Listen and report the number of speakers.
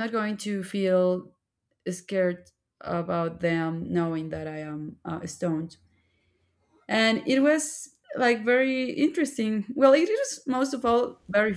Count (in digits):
1